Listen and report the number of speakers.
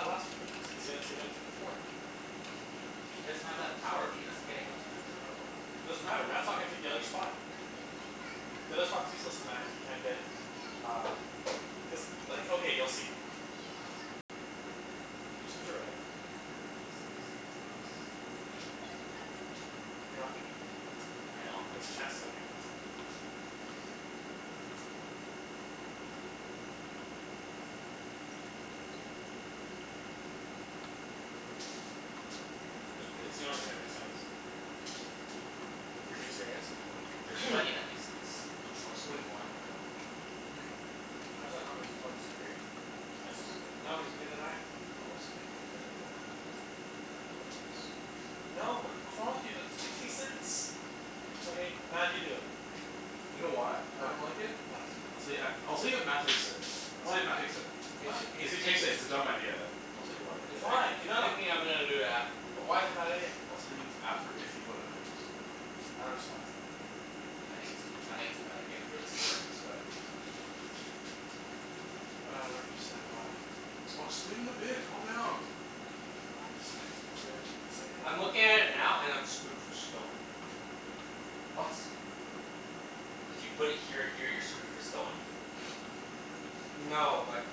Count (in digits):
4